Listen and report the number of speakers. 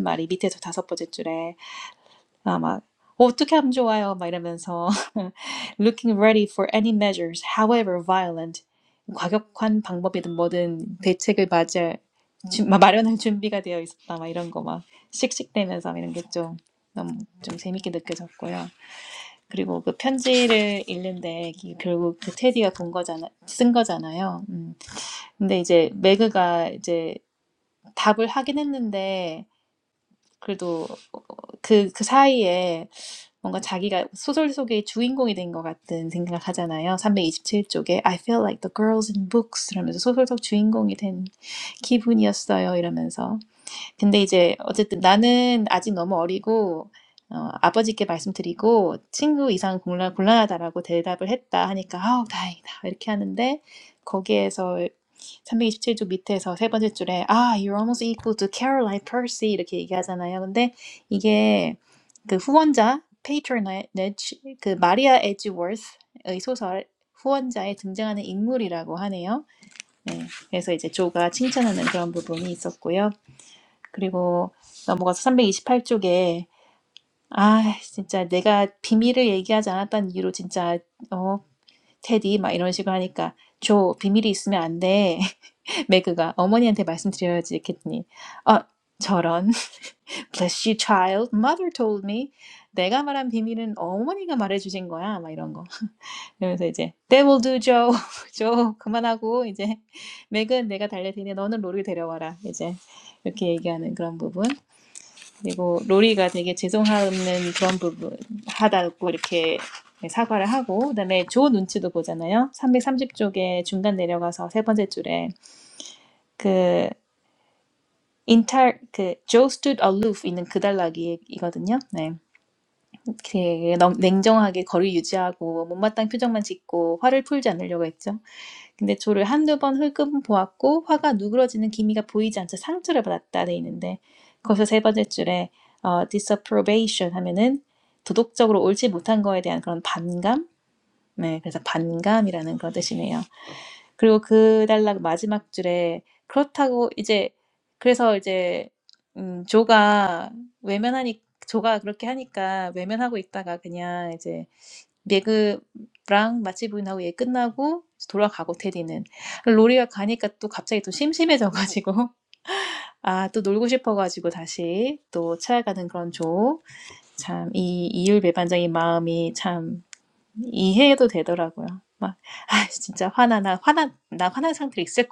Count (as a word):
one